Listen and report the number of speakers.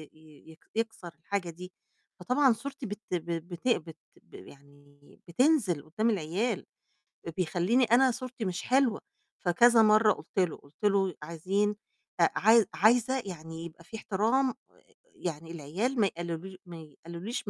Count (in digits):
1